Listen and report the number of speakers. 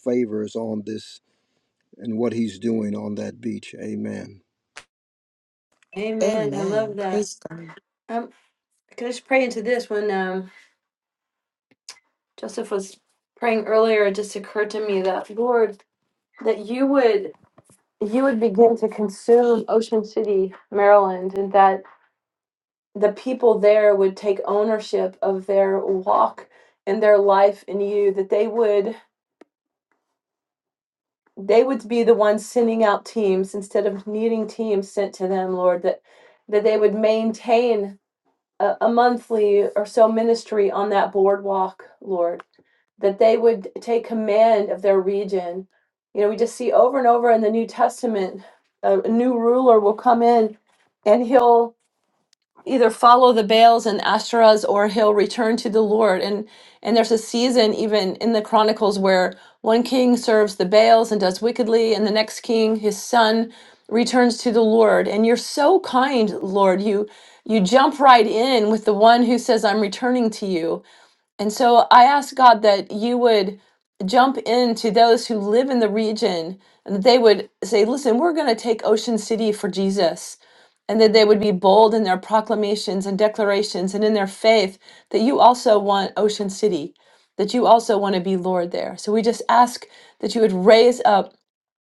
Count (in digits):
3